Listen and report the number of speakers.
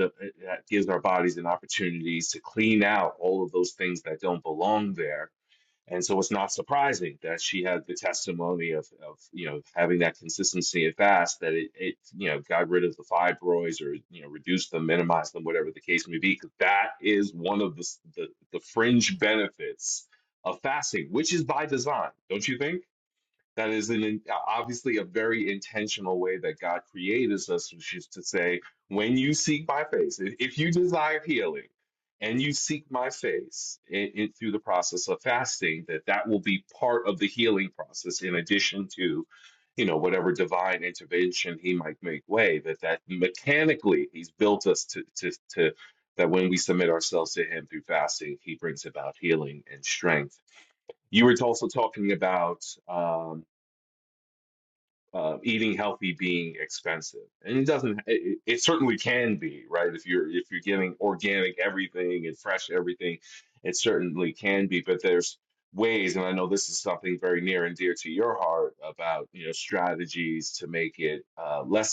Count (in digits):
1